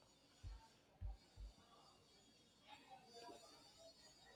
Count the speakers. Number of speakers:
0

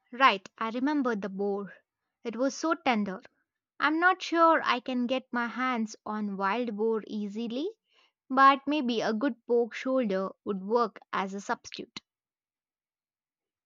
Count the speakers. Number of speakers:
1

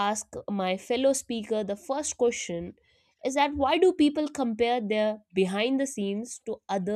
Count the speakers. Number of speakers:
1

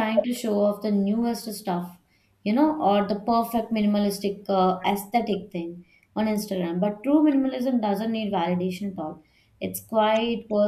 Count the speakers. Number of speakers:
1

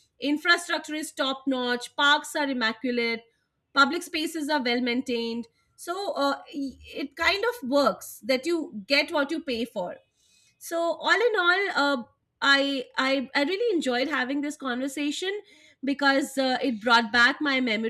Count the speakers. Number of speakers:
1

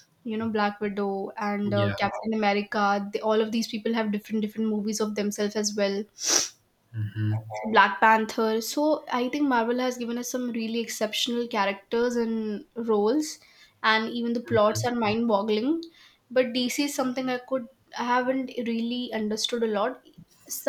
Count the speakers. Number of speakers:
2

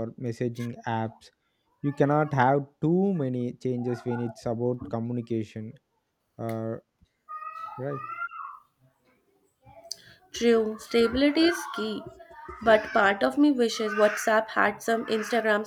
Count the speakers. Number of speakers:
2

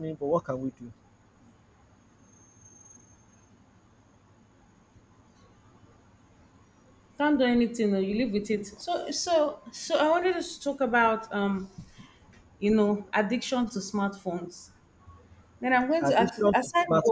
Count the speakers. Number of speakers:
2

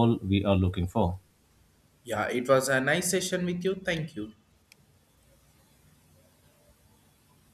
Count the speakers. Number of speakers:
2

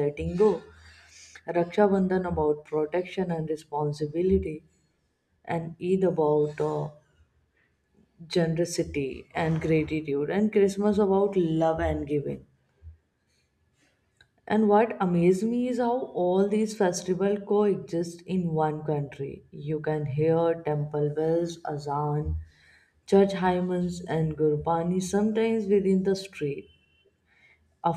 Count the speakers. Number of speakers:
1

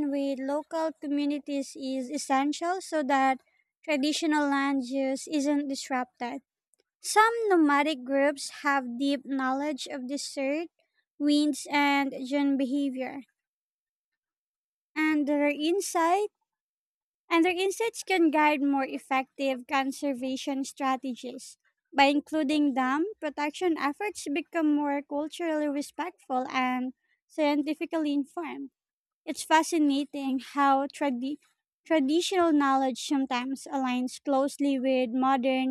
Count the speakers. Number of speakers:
1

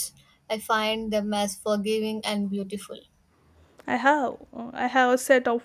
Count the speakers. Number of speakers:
2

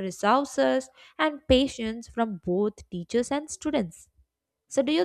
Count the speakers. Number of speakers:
1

